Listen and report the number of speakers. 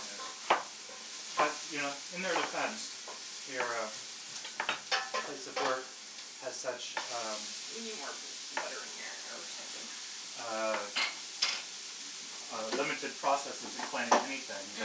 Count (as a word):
two